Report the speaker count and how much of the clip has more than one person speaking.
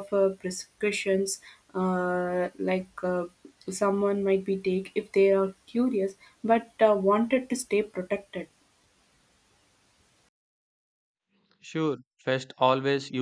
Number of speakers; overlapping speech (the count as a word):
two, no overlap